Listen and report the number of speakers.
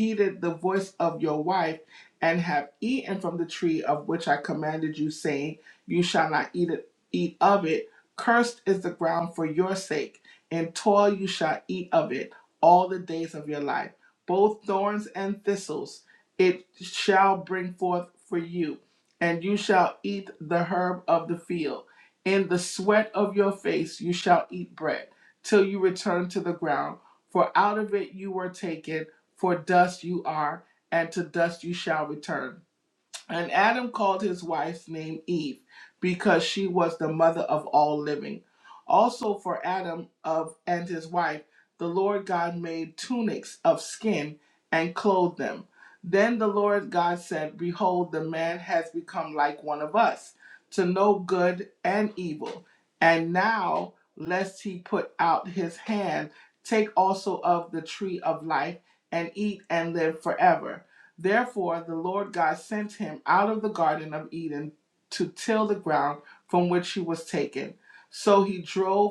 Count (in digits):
1